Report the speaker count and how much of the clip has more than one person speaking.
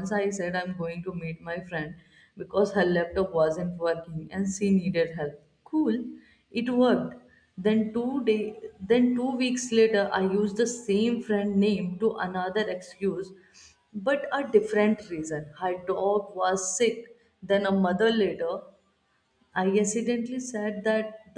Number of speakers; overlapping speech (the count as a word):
one, no overlap